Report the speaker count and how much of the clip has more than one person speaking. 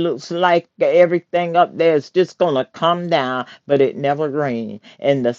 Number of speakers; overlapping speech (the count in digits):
1, no overlap